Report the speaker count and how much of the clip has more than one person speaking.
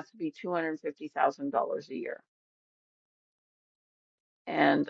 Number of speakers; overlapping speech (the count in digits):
1, no overlap